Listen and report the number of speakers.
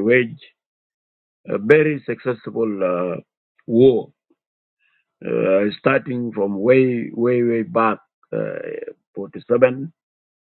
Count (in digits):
1